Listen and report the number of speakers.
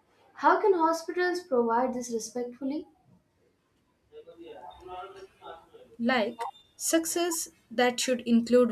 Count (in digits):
2